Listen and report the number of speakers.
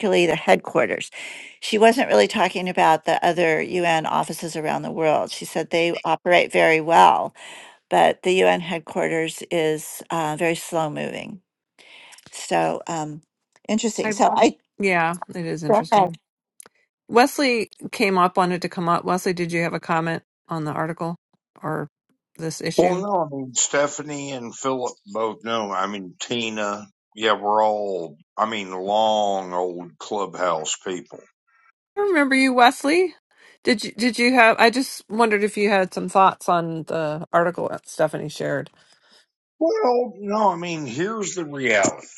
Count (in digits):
3